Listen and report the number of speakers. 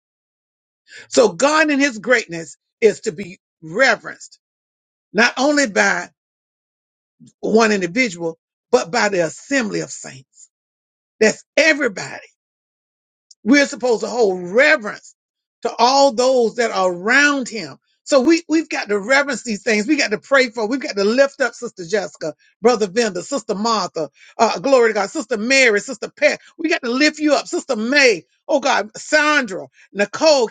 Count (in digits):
1